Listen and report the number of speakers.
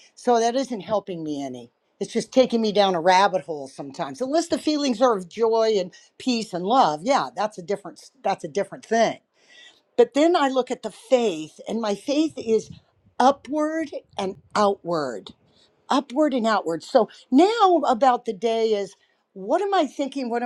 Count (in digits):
1